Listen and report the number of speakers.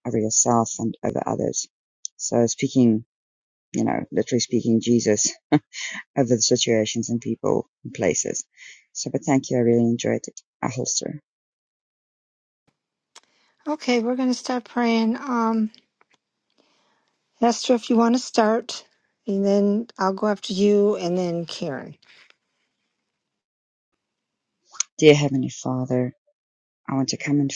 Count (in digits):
2